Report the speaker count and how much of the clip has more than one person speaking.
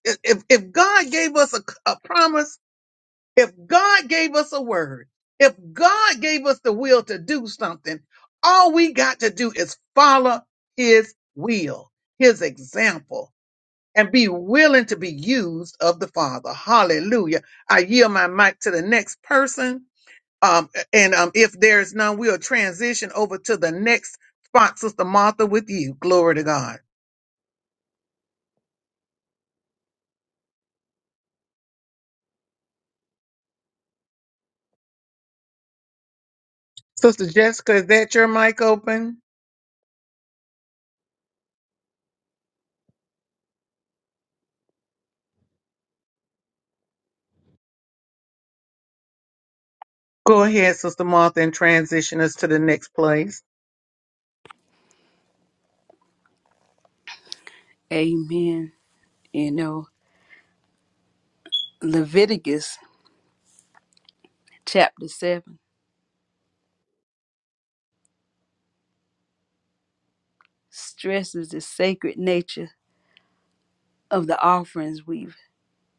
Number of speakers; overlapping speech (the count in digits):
2, no overlap